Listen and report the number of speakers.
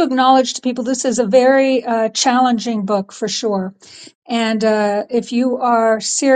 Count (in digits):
1